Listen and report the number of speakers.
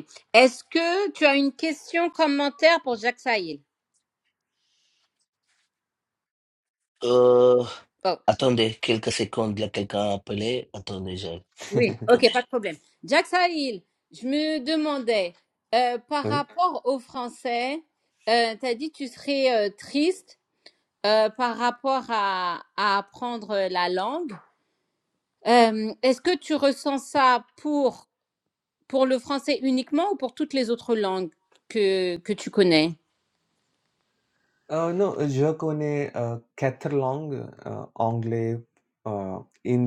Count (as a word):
three